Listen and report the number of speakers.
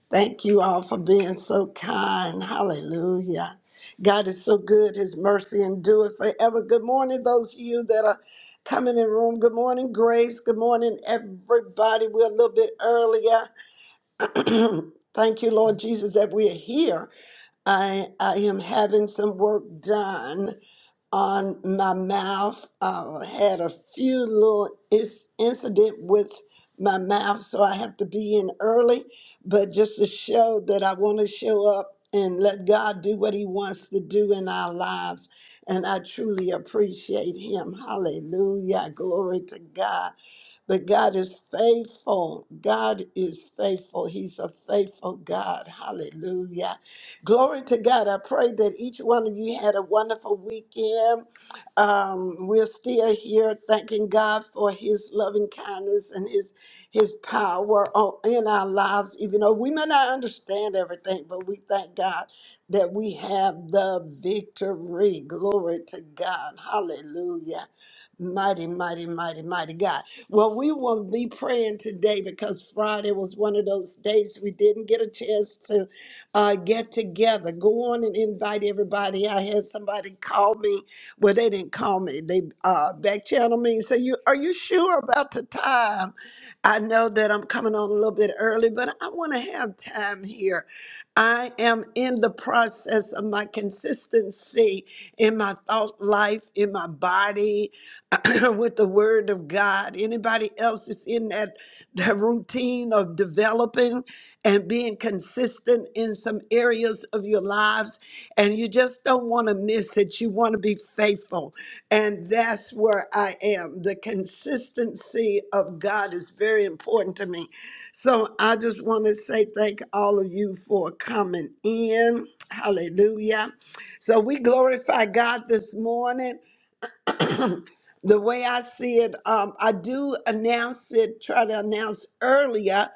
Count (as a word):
one